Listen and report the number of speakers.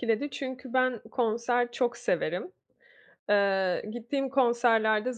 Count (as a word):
one